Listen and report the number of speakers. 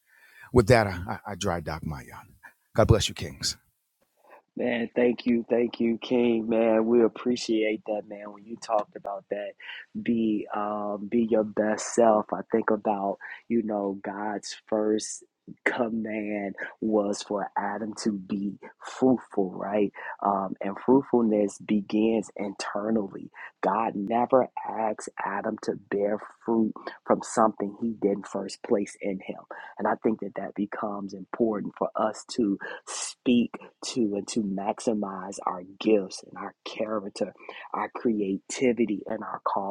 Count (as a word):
two